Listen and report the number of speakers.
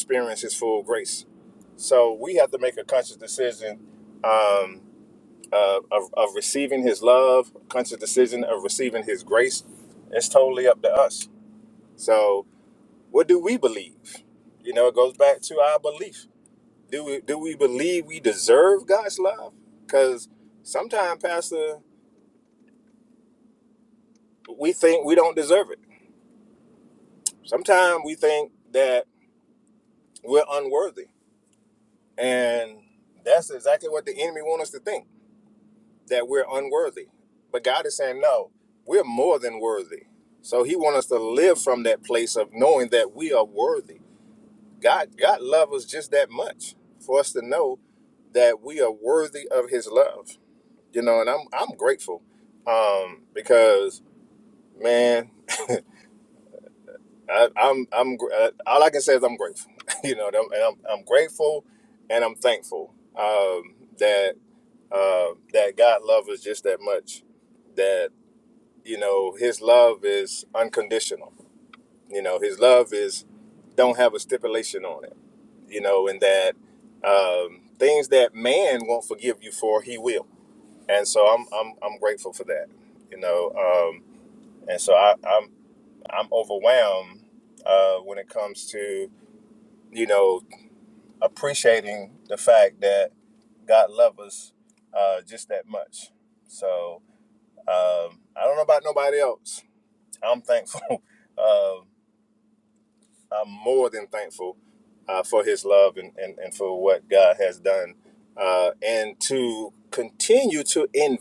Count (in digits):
1